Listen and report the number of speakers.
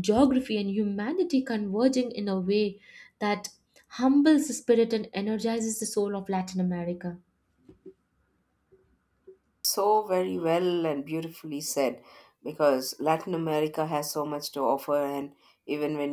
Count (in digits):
2